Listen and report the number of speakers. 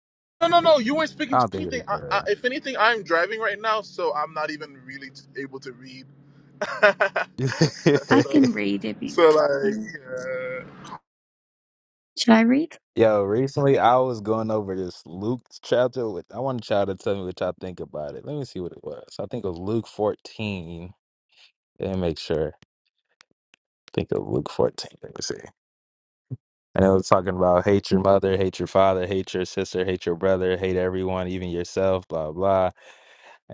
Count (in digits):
3